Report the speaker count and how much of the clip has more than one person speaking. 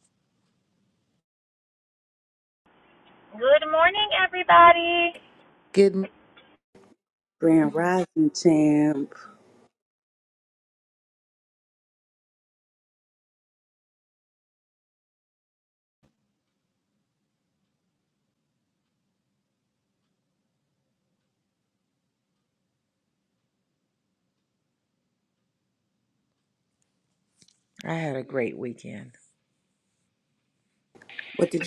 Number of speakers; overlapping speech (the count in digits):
3, no overlap